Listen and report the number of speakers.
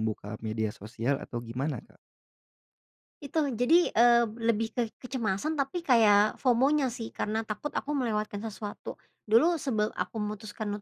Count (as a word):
two